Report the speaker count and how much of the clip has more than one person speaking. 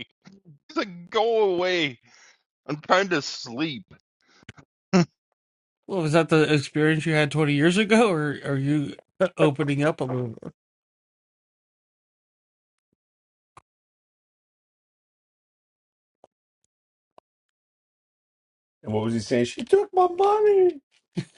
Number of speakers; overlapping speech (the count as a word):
three, no overlap